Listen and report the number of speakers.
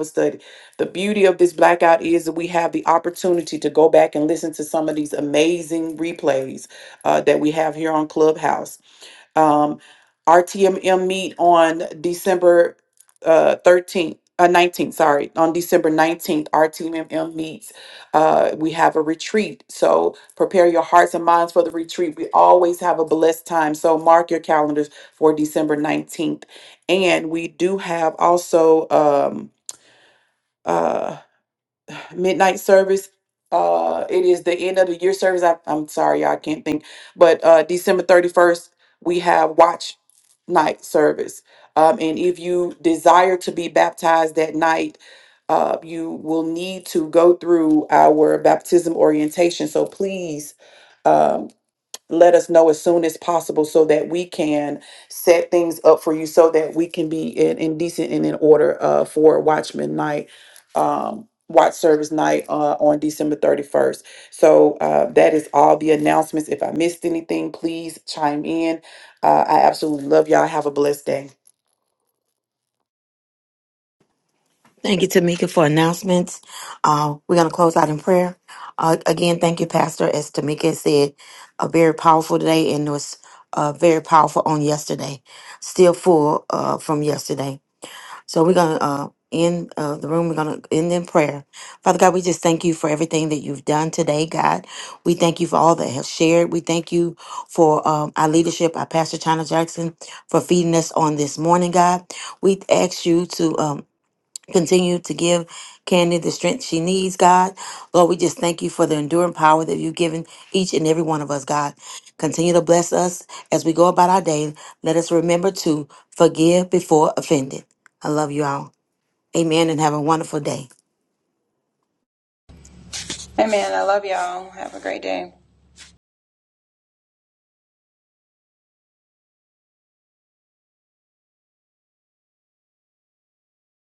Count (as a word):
three